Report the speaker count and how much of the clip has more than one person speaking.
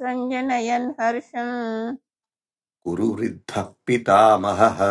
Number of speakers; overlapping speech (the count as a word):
two, no overlap